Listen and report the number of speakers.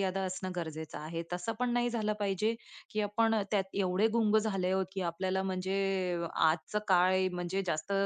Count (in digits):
1